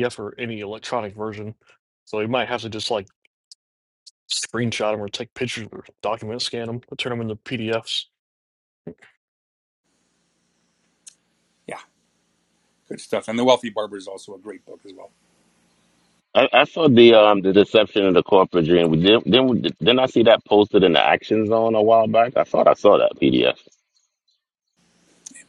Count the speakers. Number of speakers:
3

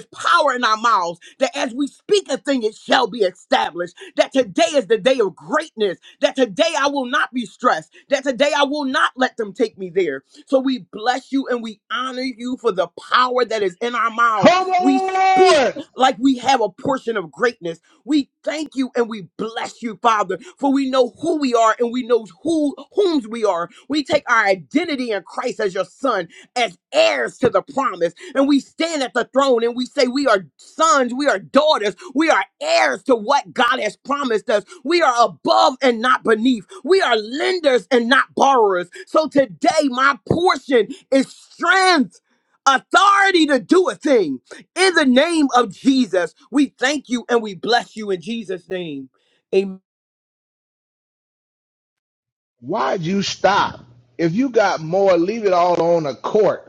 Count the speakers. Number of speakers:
2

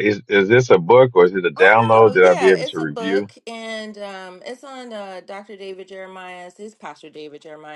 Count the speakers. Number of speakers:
2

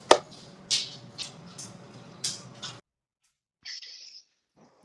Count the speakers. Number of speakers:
0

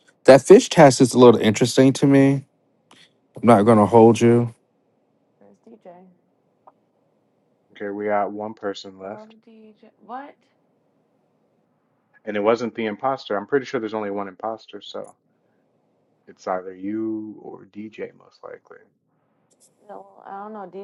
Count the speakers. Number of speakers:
3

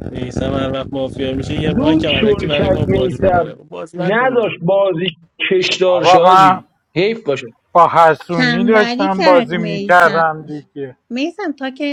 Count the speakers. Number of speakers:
4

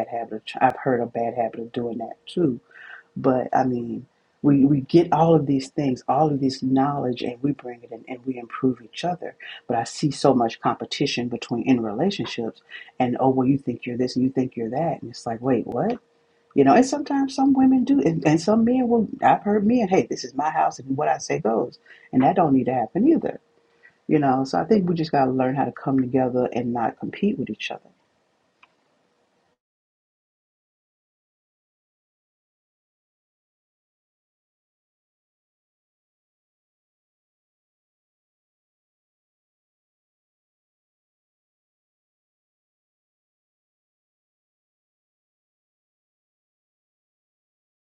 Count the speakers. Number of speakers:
1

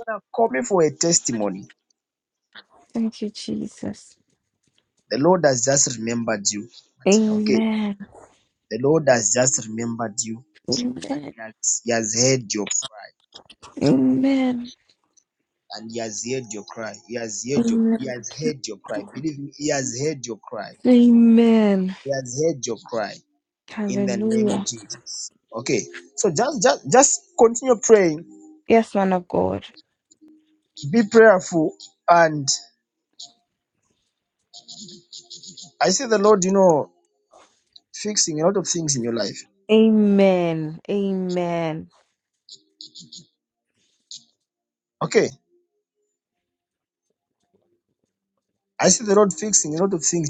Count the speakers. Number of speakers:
2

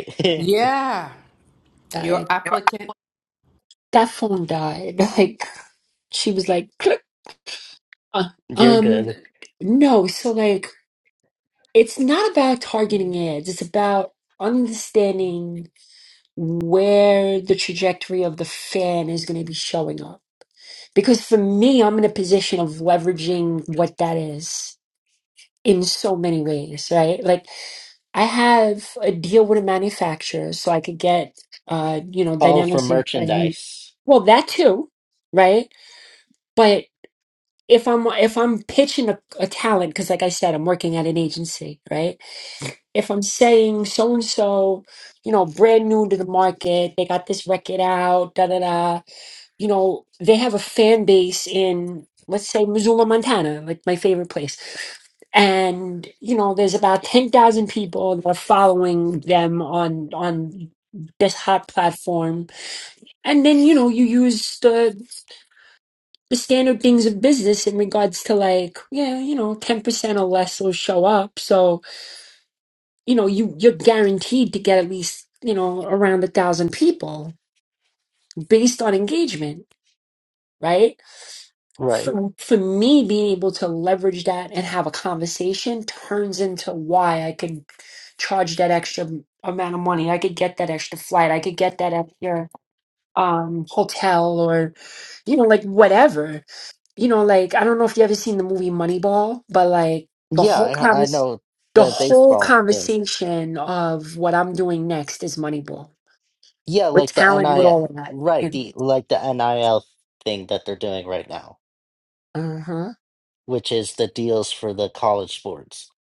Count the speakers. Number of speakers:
3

